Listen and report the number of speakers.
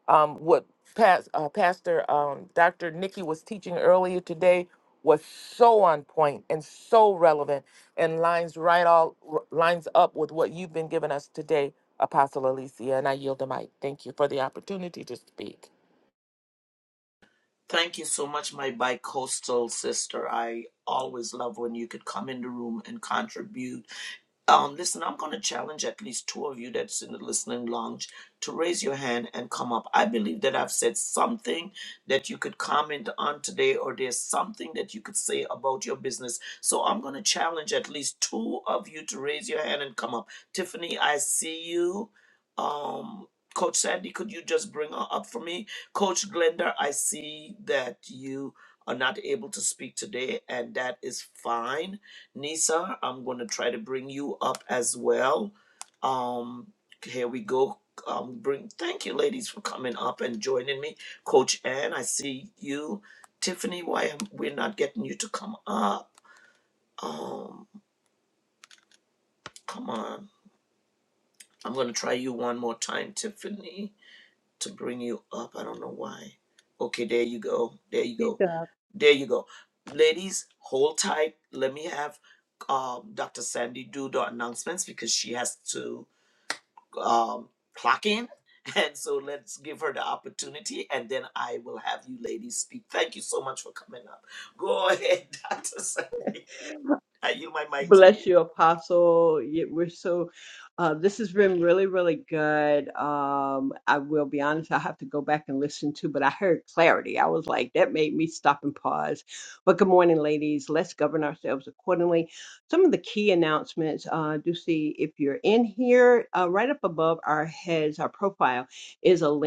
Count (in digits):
3